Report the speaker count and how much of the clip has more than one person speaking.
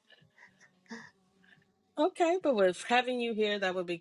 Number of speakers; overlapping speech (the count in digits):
1, no overlap